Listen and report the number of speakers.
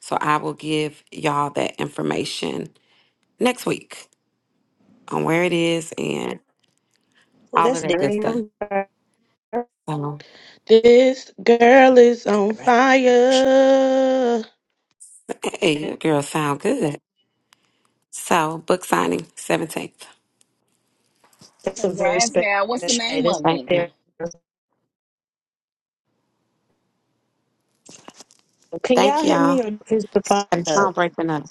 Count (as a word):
four